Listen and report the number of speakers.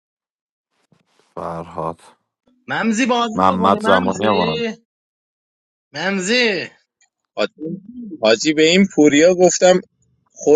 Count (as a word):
three